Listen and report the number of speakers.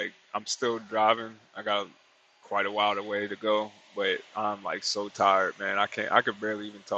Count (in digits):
1